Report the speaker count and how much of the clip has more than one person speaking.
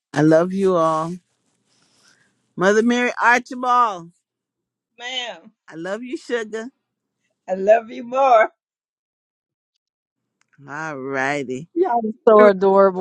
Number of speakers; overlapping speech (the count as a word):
three, no overlap